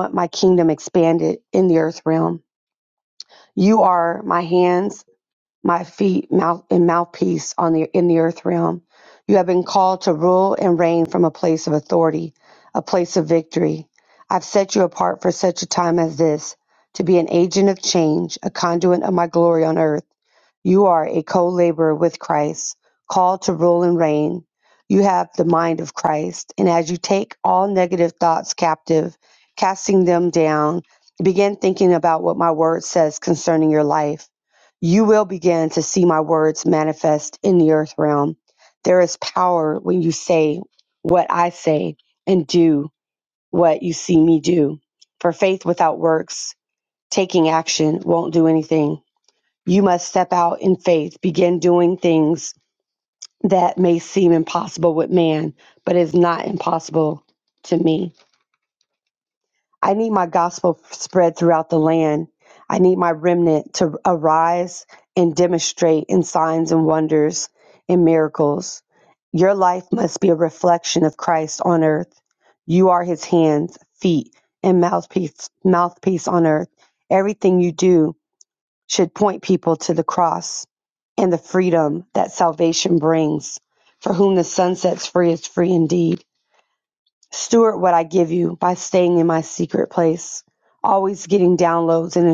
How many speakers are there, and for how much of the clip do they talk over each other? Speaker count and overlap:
one, no overlap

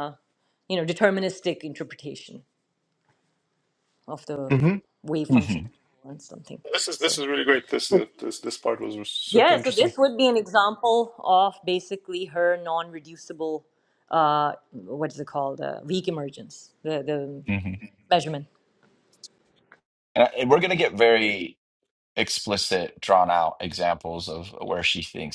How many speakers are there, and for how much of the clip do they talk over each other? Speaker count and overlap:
three, about 3%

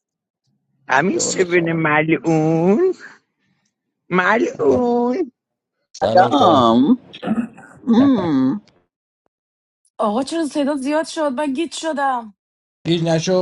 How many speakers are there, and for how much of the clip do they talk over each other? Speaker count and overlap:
four, about 12%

